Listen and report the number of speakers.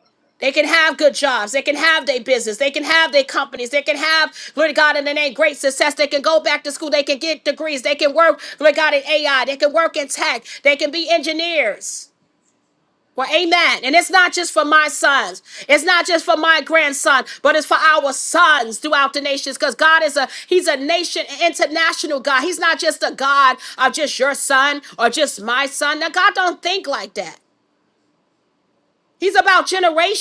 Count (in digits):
1